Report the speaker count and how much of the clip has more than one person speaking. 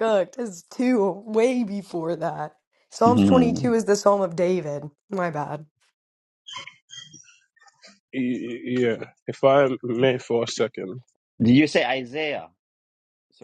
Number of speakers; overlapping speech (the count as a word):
three, about 5%